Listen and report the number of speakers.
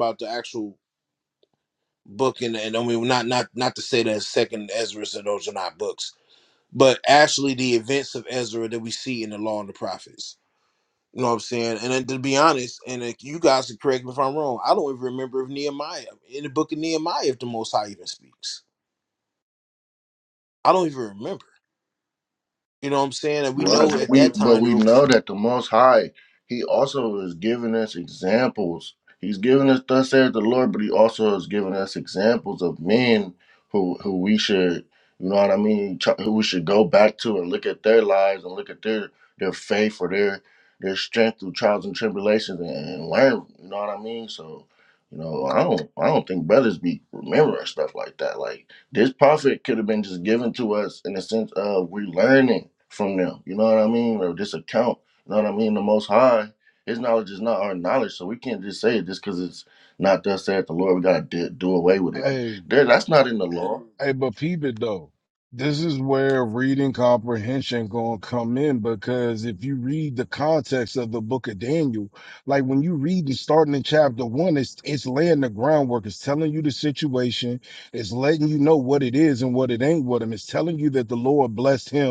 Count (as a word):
three